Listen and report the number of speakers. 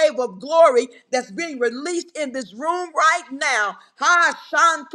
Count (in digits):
1